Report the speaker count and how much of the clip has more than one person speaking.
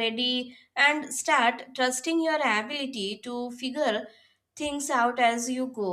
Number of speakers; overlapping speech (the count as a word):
one, no overlap